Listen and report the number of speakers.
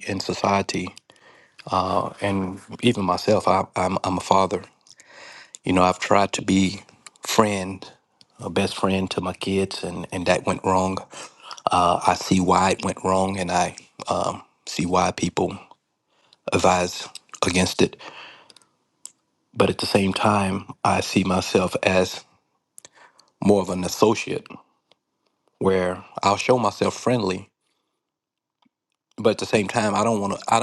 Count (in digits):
1